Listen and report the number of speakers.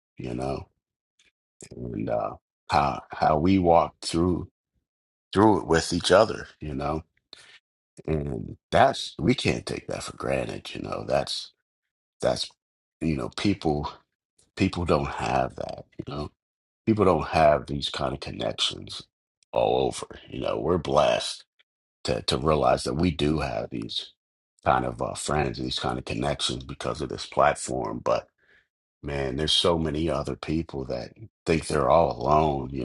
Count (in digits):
1